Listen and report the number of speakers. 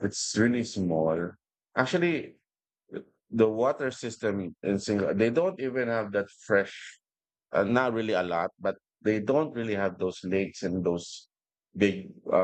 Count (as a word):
one